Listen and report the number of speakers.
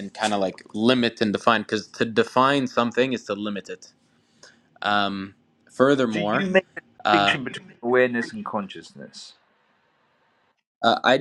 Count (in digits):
2